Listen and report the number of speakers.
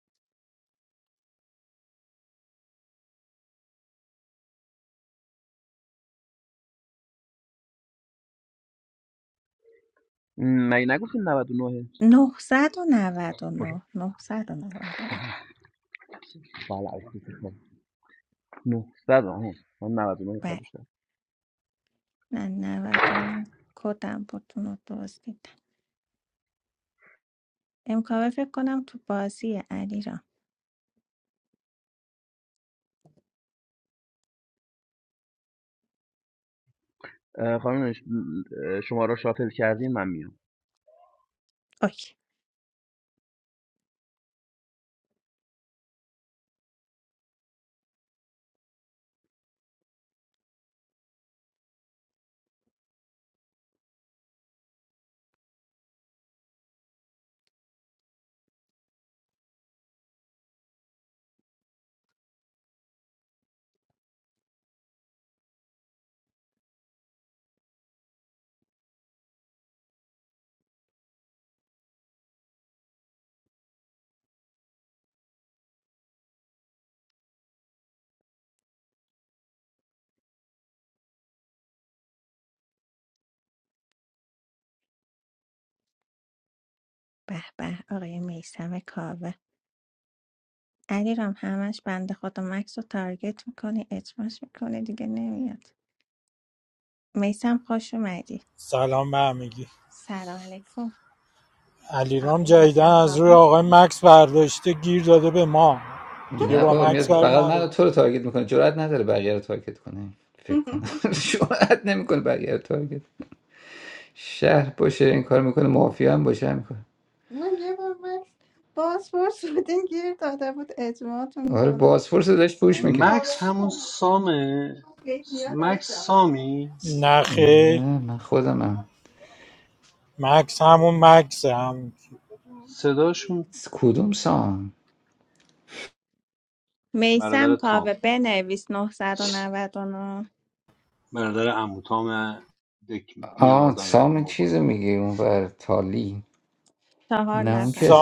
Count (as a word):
five